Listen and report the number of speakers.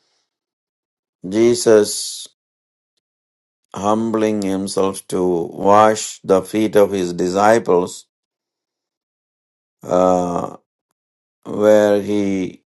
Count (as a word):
one